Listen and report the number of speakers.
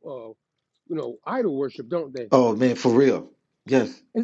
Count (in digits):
2